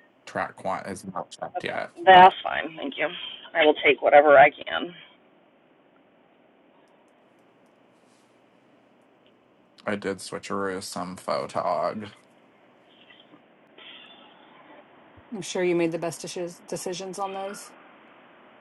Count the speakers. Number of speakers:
3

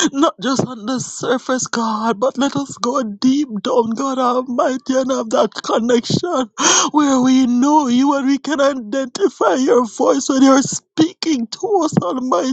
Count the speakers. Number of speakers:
1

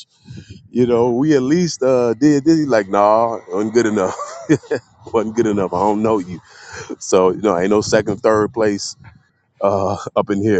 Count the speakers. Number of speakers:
1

